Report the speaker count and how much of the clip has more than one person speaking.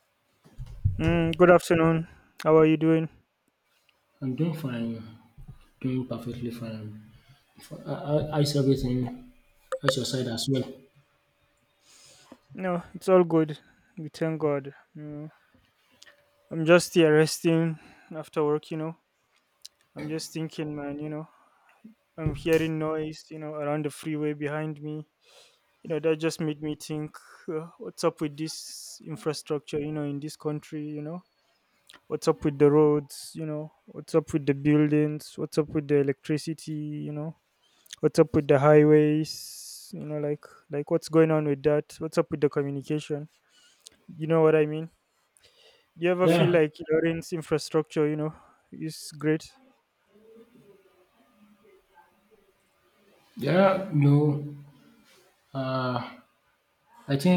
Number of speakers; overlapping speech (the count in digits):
2, about 1%